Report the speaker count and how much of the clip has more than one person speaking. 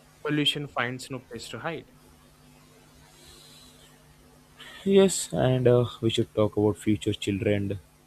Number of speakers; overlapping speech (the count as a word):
two, no overlap